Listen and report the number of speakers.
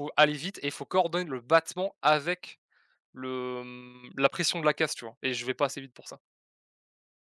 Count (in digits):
1